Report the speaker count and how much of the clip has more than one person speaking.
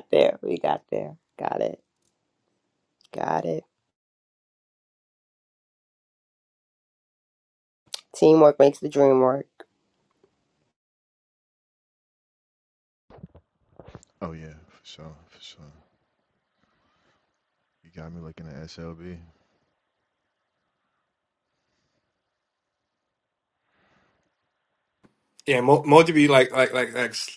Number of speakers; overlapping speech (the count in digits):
3, no overlap